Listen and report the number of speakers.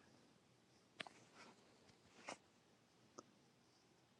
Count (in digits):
0